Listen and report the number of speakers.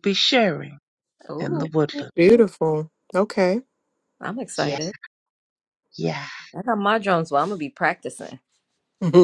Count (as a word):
three